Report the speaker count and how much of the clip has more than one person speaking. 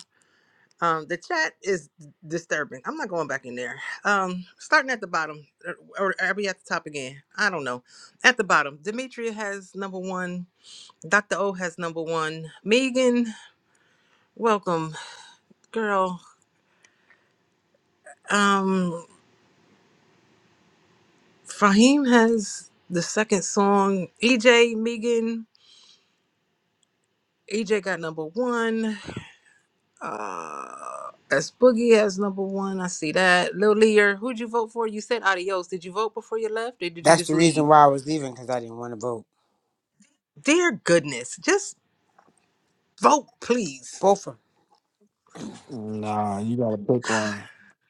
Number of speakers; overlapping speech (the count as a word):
three, about 1%